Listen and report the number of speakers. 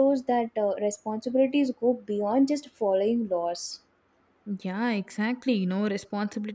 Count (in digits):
2